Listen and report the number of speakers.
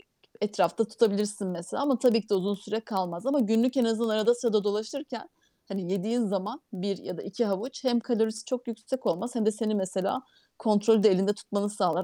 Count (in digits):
1